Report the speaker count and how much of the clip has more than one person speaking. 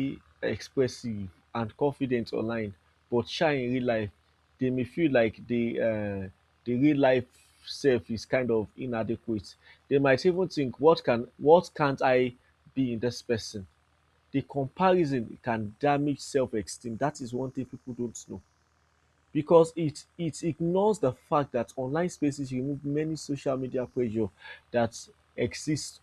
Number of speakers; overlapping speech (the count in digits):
1, no overlap